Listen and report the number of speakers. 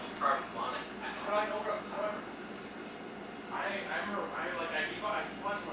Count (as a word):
three